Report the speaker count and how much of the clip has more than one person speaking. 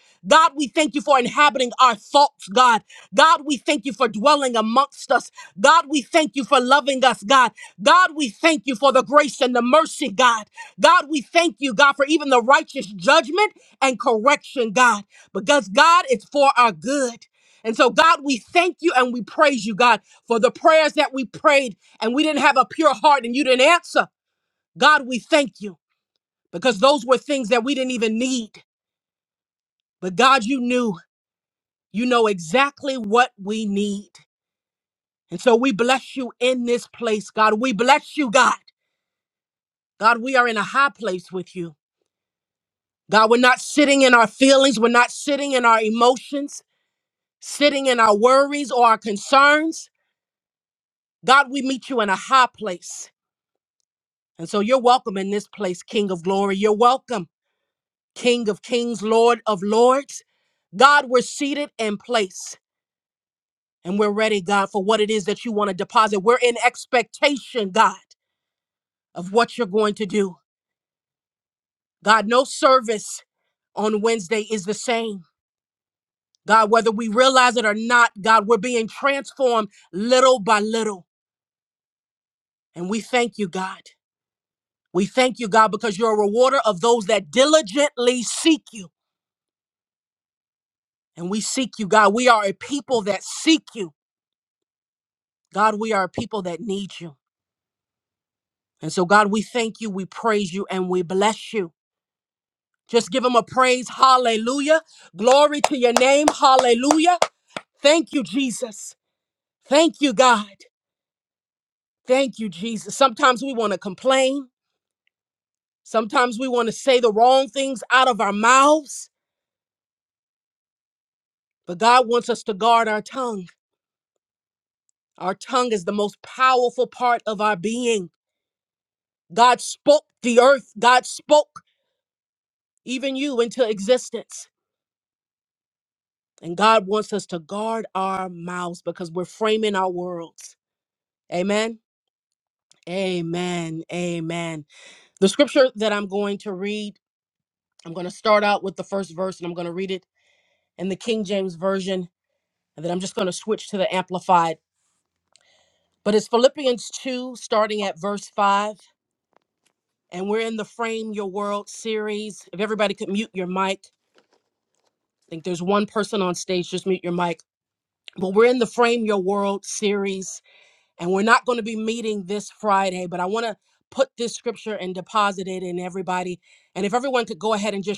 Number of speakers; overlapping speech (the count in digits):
1, no overlap